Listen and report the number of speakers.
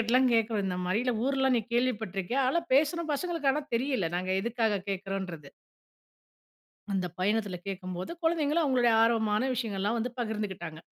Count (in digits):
1